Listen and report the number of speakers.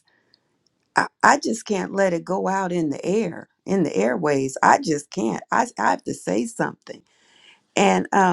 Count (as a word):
one